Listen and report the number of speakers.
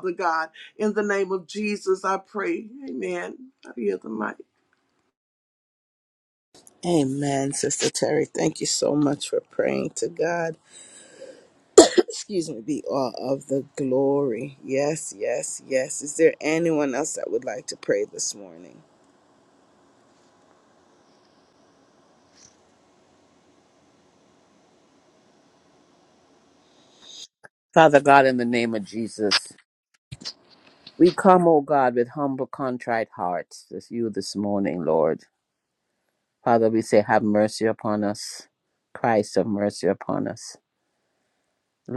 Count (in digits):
3